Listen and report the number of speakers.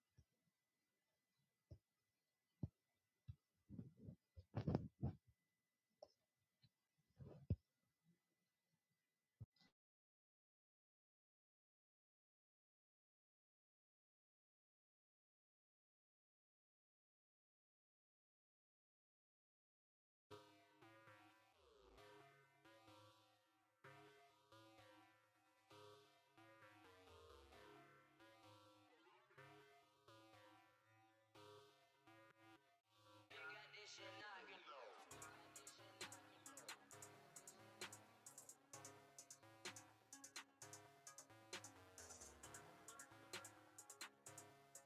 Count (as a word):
zero